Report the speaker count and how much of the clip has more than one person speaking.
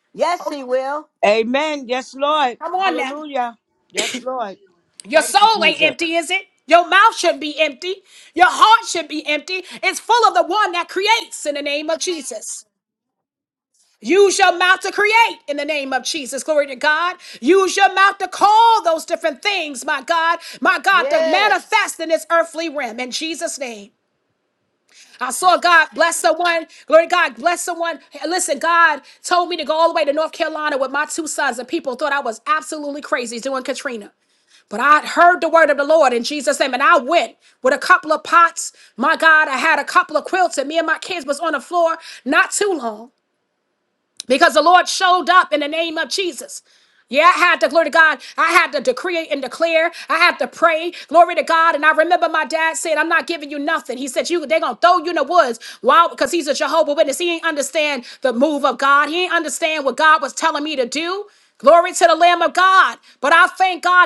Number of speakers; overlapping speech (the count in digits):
3, about 3%